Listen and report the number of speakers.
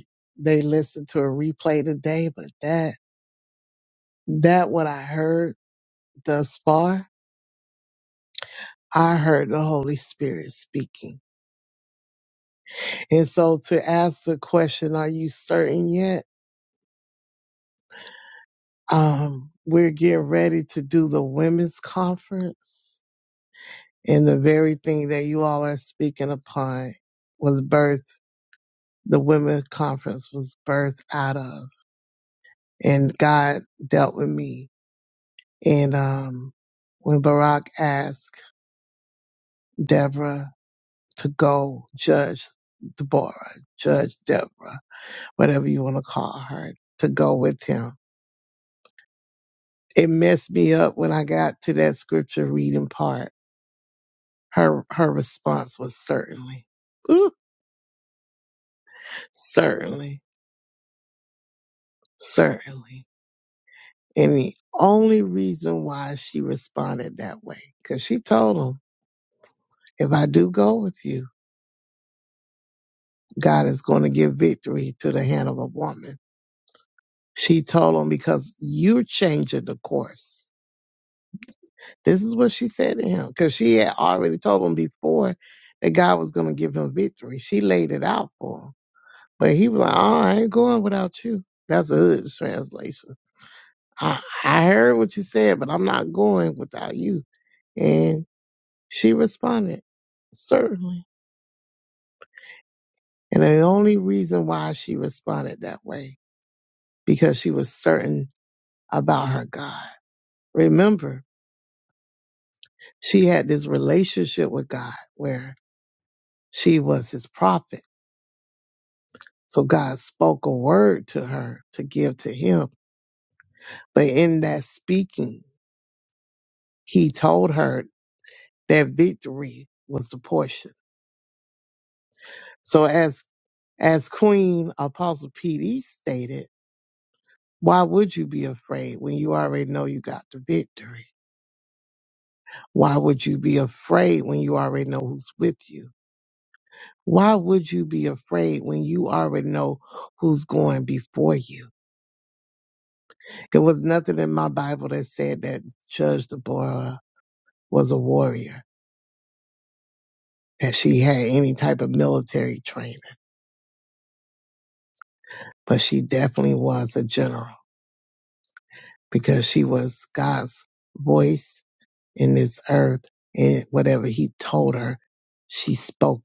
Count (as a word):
one